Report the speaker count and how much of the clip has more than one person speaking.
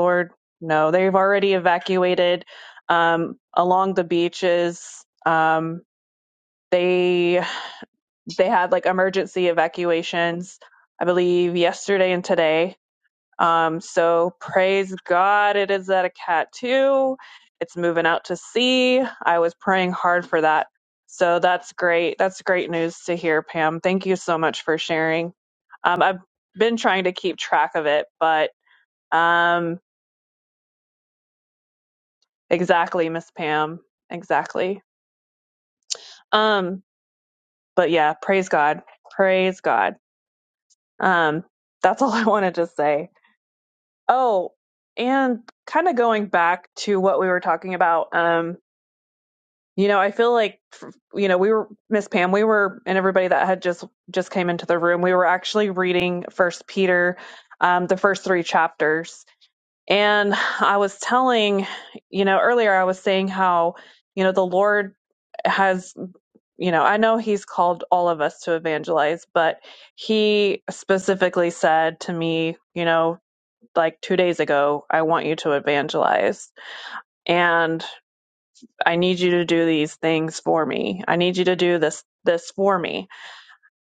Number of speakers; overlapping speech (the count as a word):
one, no overlap